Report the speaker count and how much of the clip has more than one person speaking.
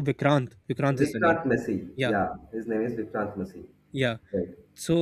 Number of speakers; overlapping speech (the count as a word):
two, about 13%